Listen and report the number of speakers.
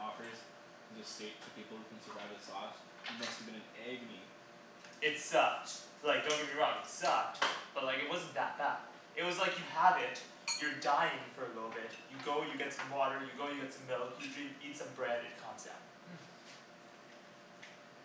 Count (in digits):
2